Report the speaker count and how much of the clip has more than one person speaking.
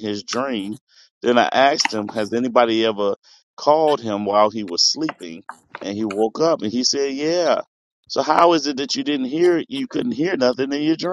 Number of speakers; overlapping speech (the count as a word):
one, no overlap